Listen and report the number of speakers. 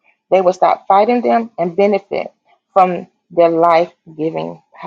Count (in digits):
1